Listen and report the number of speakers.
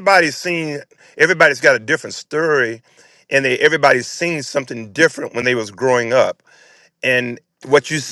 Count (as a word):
one